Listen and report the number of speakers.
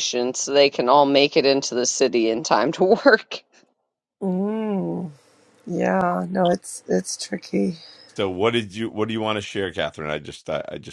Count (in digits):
3